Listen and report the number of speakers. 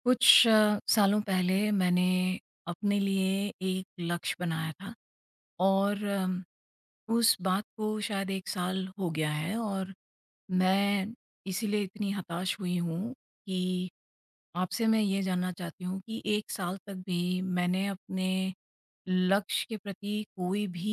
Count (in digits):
1